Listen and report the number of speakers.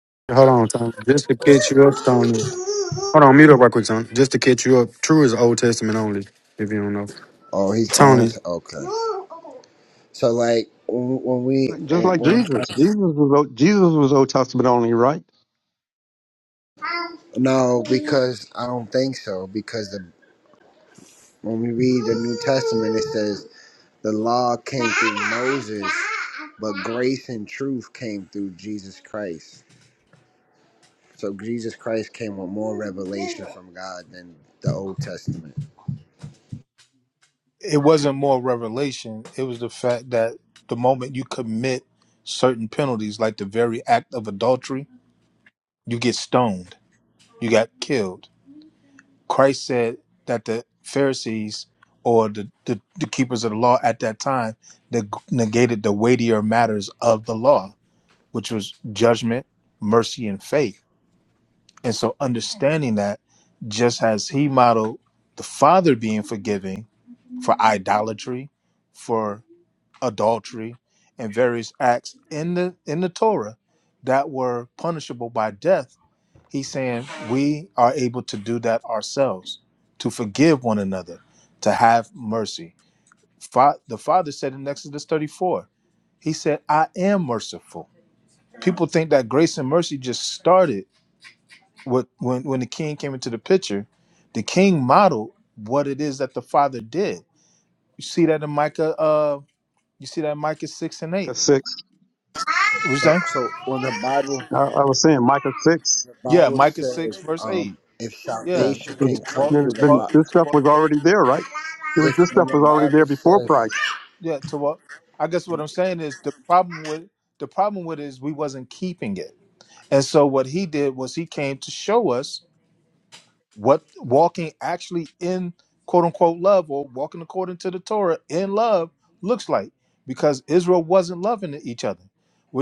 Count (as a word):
four